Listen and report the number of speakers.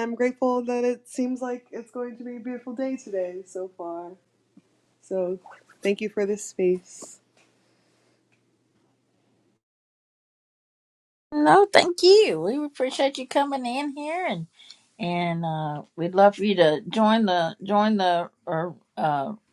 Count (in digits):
2